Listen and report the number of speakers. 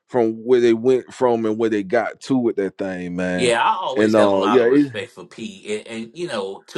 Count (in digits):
2